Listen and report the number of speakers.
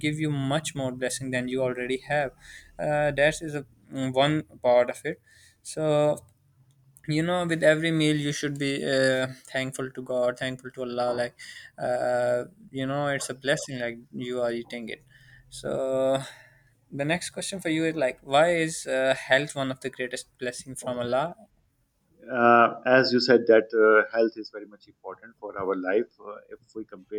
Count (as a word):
two